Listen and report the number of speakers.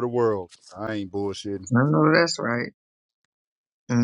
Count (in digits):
2